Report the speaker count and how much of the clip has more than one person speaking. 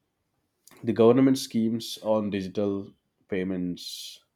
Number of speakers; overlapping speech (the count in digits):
1, no overlap